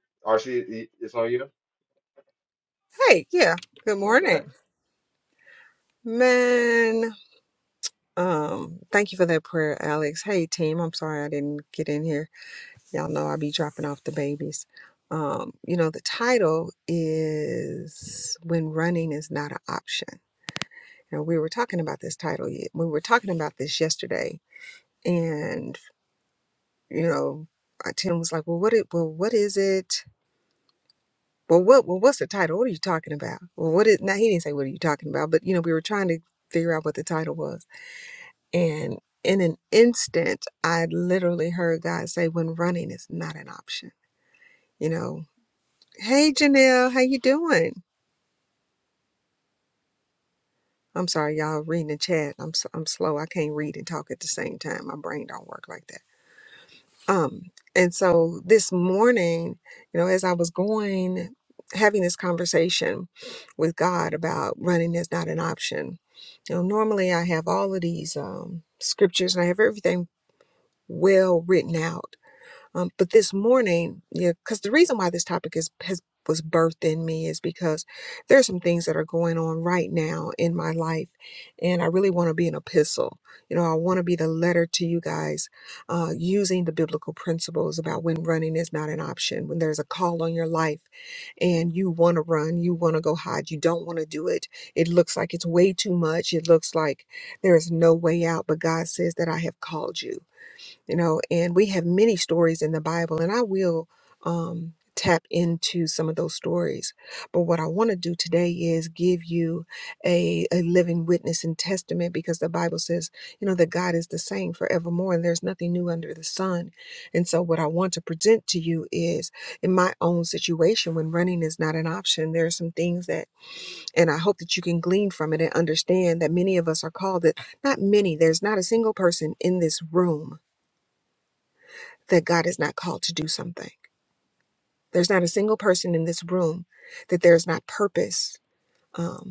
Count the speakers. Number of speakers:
2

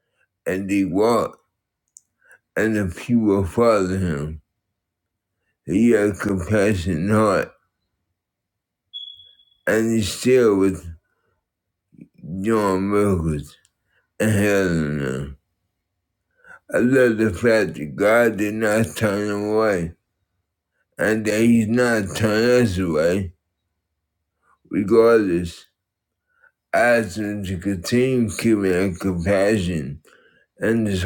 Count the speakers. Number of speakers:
1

